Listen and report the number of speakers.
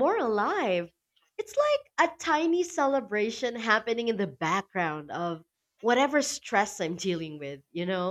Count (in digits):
1